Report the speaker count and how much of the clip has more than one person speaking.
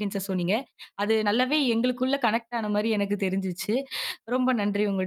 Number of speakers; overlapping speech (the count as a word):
one, no overlap